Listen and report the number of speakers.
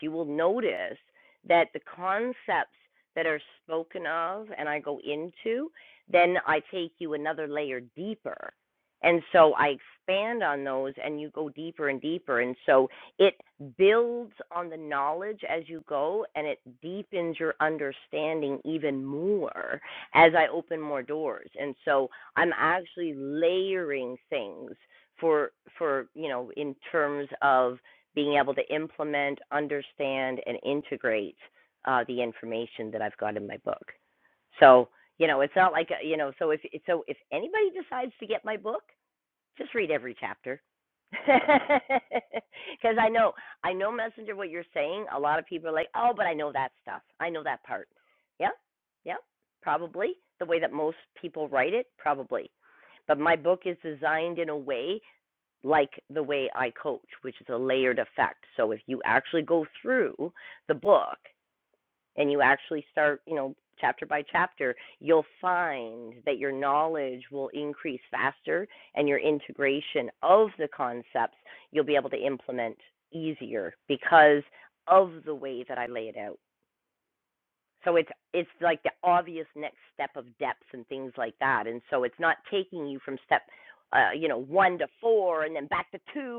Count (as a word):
one